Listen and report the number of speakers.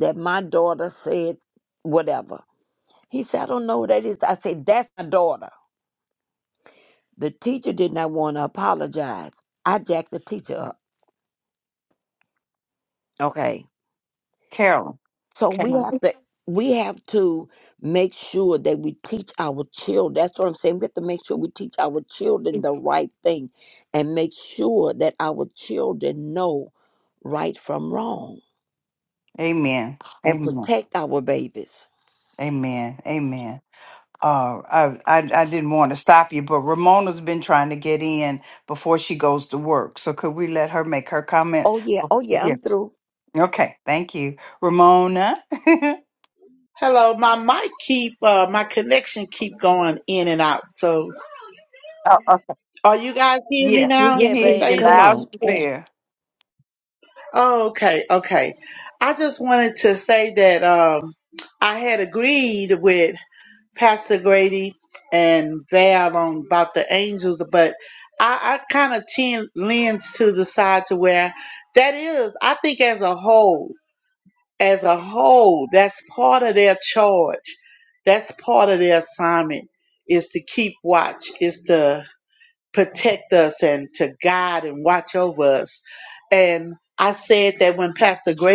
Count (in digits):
3